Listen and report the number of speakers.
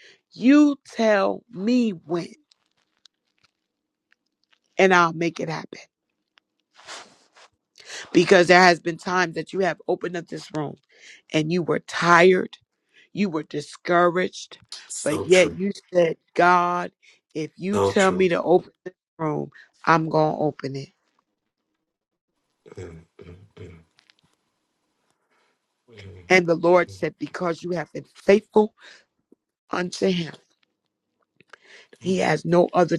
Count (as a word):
two